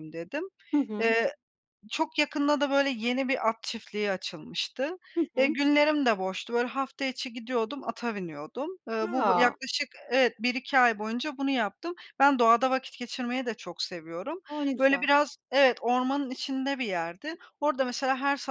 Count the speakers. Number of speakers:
two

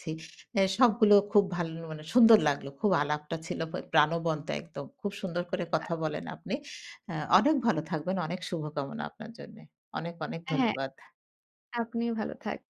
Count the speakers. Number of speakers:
two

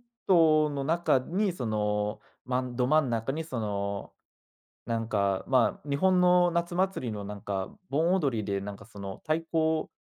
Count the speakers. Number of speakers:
one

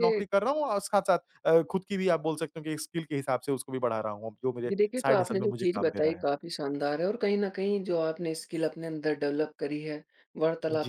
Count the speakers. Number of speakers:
two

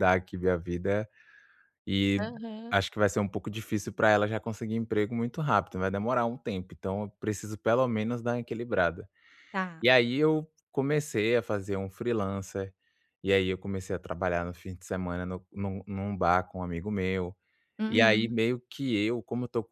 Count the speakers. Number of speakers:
two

